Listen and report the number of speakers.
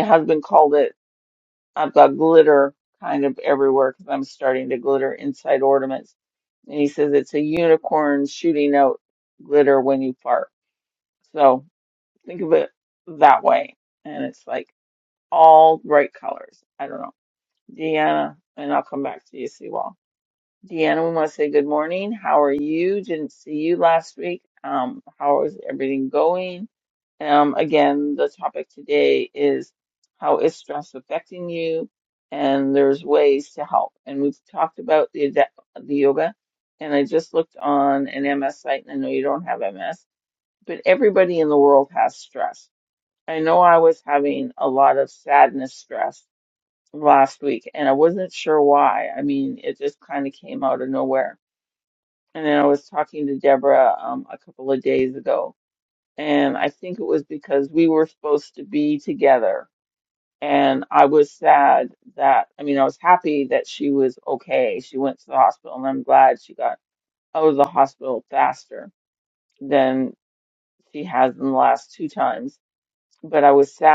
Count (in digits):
1